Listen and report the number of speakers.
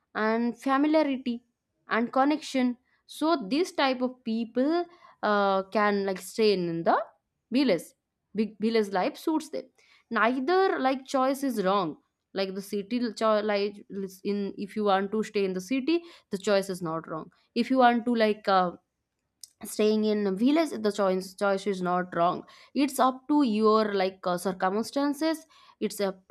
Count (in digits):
1